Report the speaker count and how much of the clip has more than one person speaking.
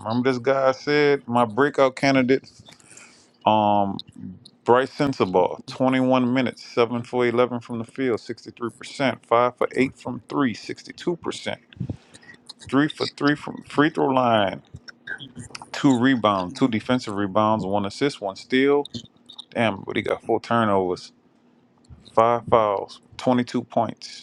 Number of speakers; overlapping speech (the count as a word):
one, no overlap